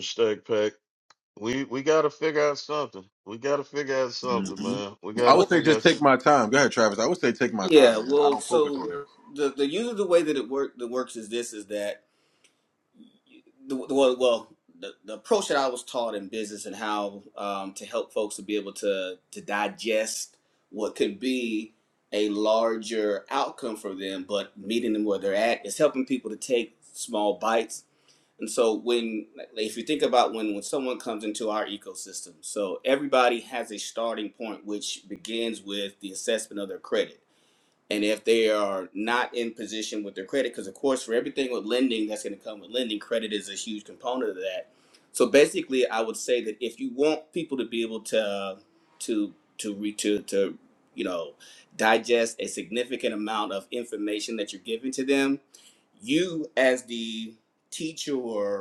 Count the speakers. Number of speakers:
three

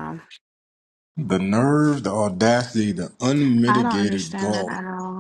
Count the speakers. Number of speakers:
two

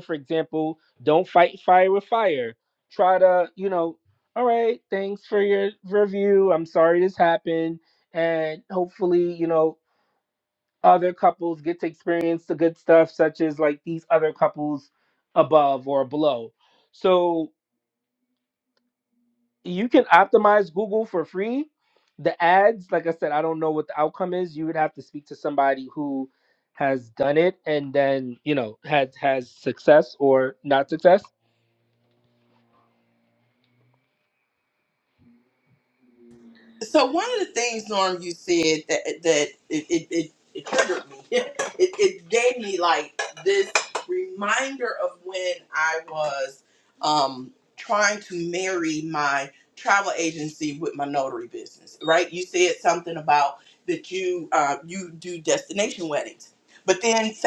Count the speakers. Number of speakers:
two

